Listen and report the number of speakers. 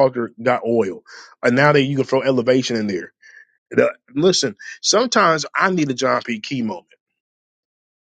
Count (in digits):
1